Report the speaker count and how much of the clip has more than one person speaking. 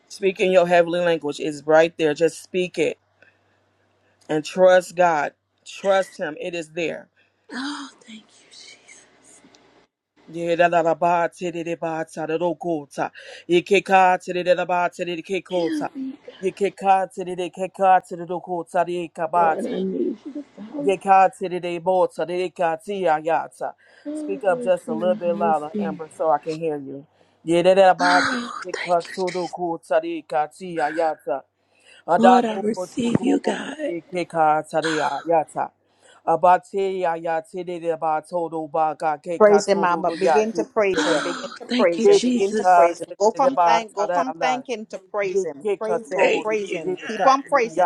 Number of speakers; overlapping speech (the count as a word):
three, about 25%